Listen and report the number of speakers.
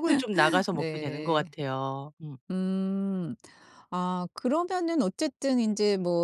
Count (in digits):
2